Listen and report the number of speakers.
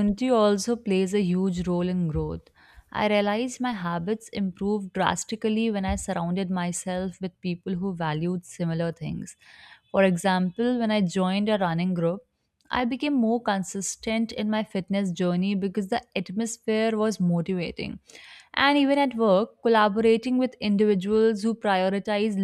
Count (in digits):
1